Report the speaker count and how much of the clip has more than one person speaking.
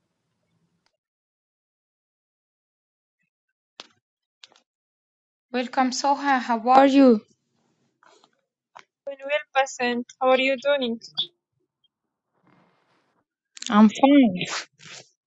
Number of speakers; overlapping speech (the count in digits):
2, no overlap